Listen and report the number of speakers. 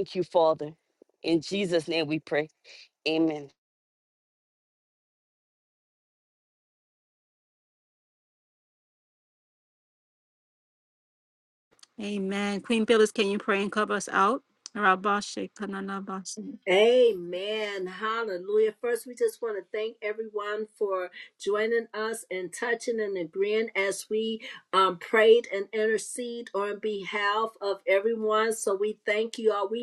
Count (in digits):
3